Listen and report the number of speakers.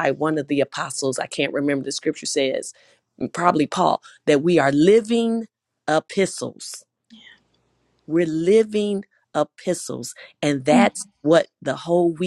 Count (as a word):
one